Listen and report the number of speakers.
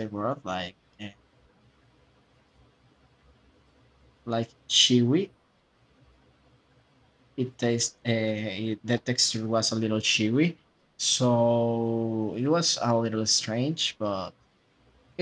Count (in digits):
1